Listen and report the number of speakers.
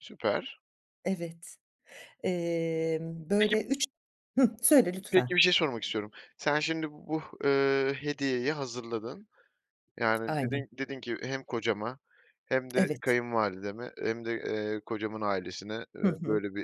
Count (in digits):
2